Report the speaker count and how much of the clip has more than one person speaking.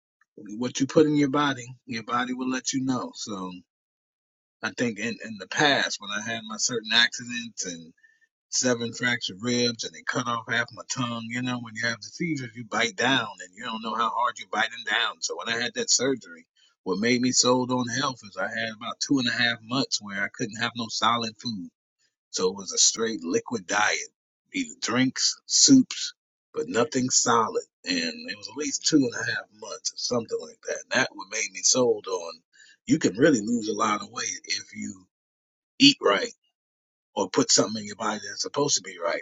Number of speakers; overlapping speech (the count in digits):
1, no overlap